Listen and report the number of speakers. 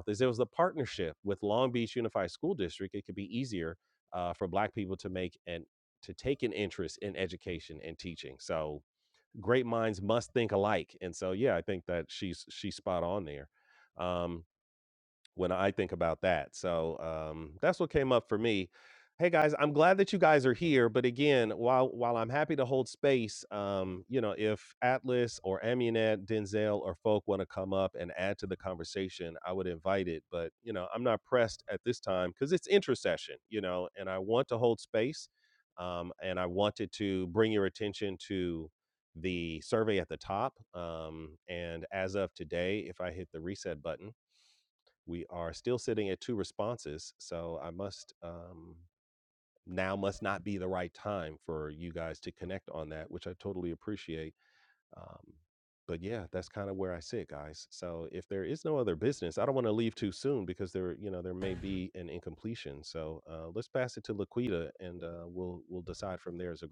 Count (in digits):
1